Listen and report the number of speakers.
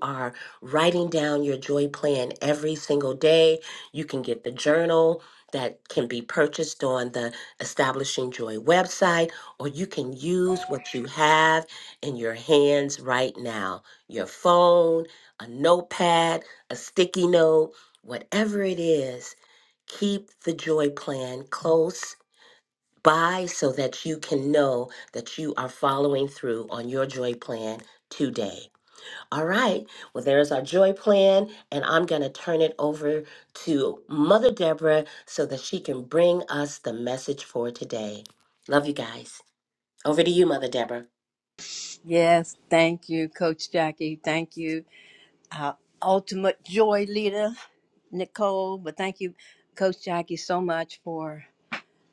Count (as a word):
two